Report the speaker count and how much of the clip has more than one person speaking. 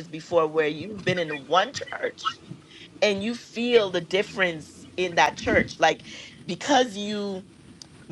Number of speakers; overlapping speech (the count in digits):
1, no overlap